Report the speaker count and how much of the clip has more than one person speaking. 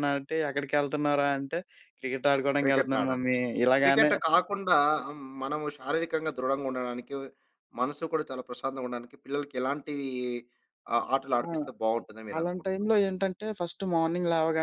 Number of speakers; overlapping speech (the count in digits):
2, about 9%